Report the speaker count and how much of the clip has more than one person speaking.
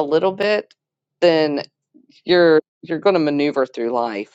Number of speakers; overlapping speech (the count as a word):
one, no overlap